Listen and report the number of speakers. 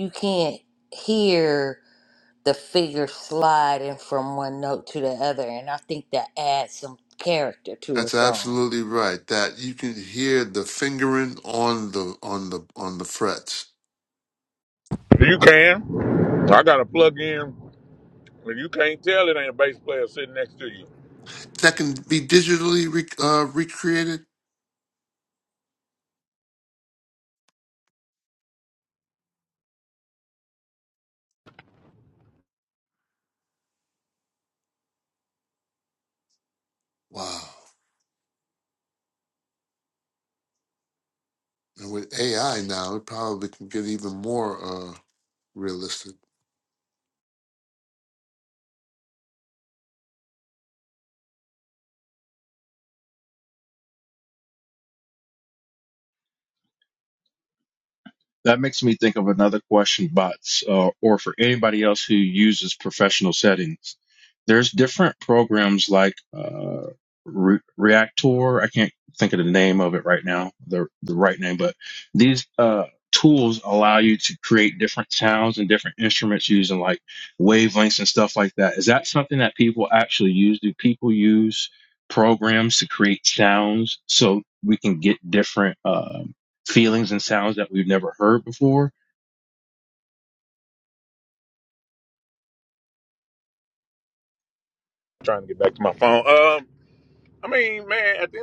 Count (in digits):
4